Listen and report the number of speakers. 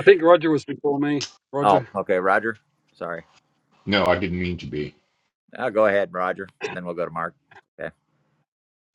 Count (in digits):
3